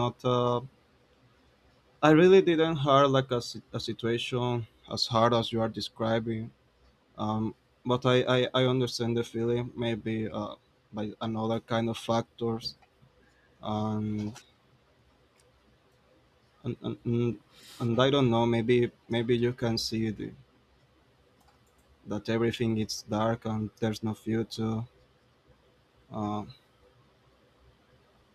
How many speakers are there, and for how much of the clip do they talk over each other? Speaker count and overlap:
one, no overlap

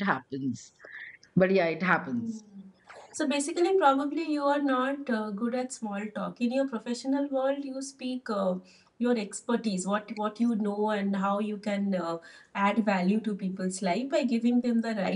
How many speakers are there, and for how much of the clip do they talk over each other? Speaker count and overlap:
two, about 1%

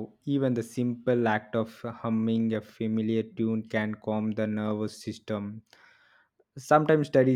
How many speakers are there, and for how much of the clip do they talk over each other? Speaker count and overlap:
one, no overlap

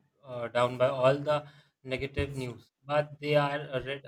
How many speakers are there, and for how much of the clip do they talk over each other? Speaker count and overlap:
one, no overlap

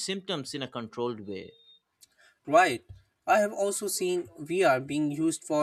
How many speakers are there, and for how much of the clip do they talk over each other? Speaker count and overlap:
two, no overlap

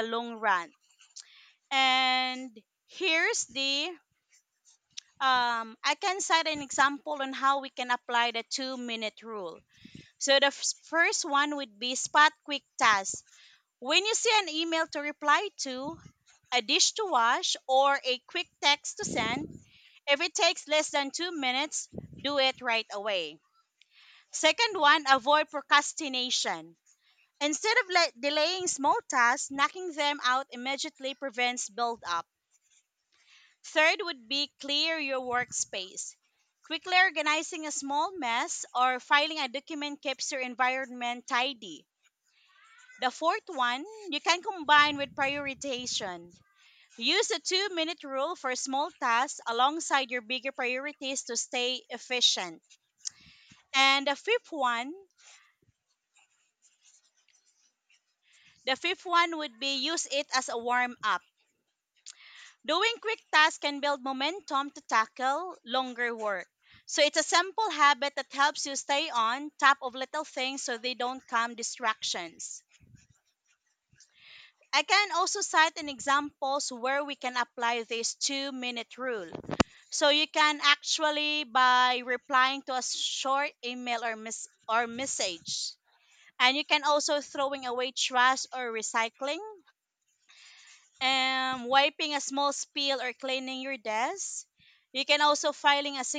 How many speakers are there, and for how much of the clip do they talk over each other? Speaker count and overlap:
one, no overlap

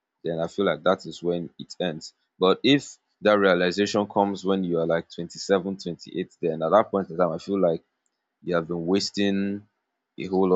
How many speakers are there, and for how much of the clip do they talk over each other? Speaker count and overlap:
one, no overlap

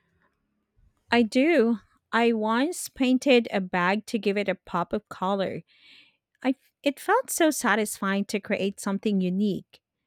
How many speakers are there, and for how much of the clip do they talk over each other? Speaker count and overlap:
one, no overlap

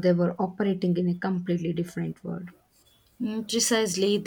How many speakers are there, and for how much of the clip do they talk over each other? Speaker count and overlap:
two, no overlap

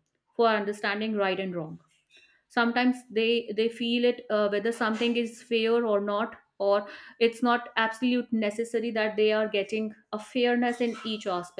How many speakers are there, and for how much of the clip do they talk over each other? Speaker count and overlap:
one, no overlap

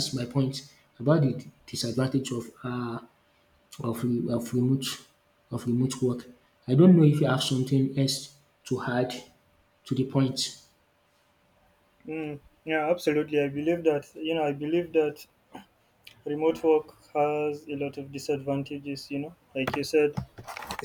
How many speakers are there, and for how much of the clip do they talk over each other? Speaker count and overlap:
two, no overlap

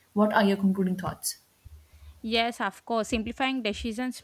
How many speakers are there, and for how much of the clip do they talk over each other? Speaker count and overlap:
two, no overlap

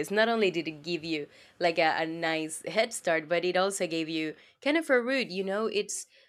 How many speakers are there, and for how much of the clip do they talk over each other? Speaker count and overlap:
one, no overlap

